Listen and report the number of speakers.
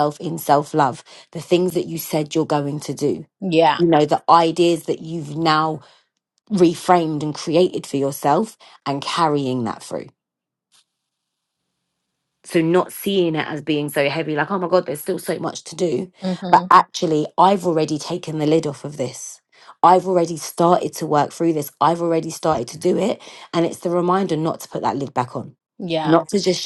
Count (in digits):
2